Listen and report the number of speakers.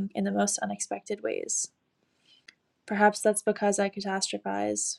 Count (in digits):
1